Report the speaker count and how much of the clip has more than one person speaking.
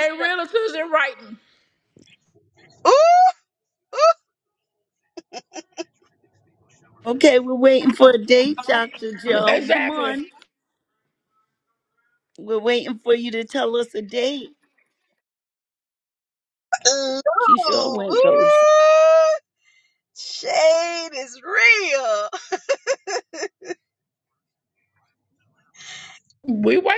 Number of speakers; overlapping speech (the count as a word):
three, about 7%